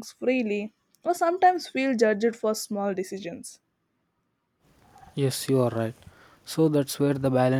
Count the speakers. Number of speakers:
two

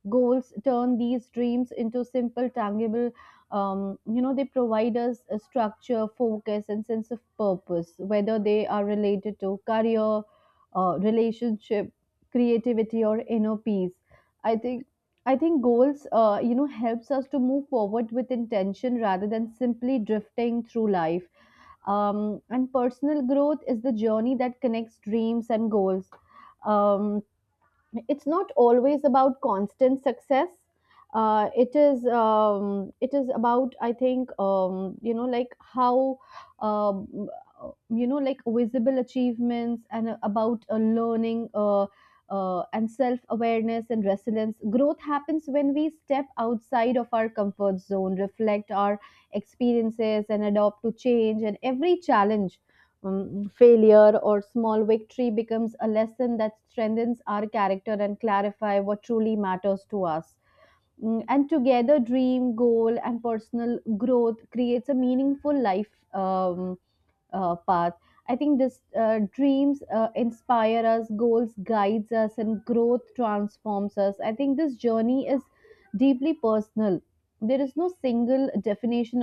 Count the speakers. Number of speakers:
one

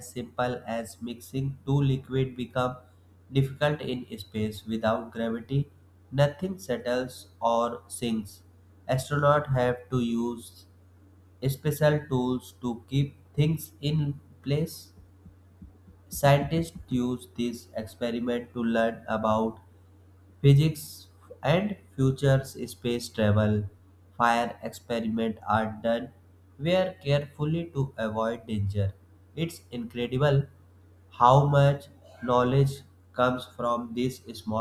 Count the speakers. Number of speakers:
one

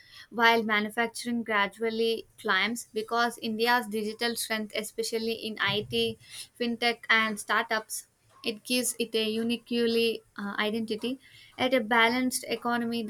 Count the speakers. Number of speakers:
one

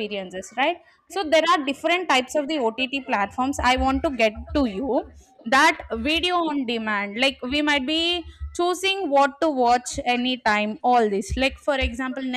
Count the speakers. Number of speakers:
one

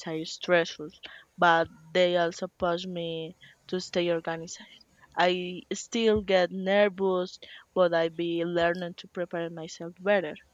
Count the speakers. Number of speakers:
one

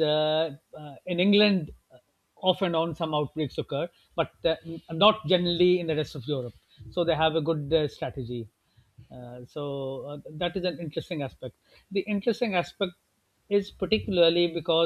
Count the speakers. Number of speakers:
one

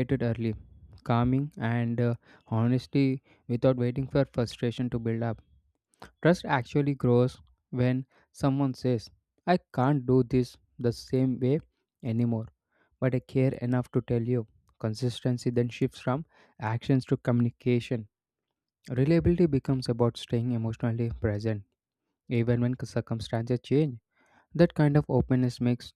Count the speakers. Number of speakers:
one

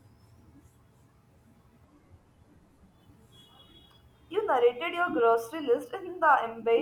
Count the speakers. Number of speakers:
one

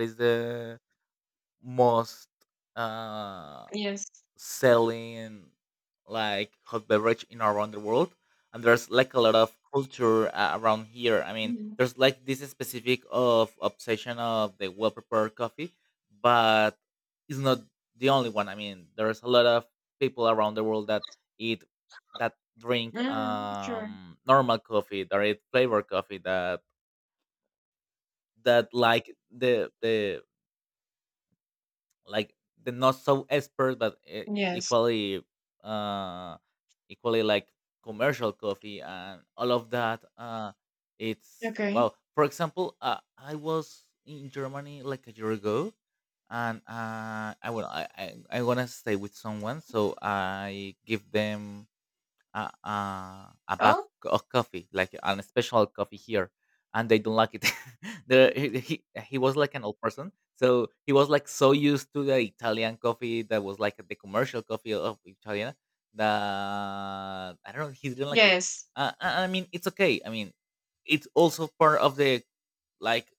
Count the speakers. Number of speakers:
two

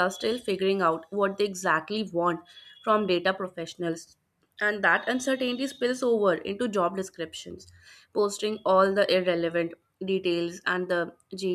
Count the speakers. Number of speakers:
one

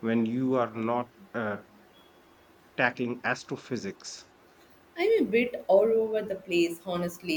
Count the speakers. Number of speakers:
two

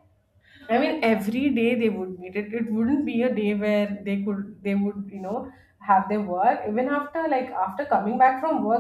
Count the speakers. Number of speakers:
one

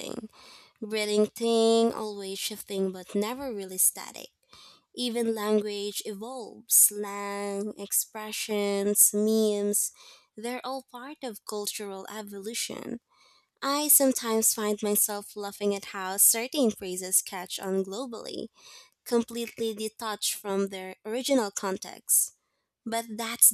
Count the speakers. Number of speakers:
one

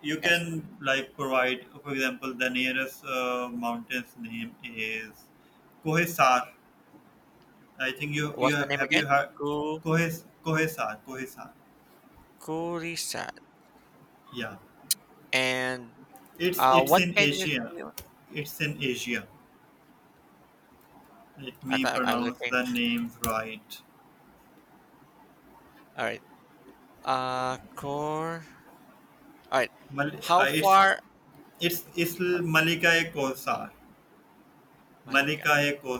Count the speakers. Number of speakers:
two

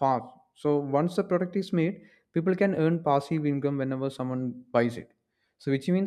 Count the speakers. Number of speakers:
one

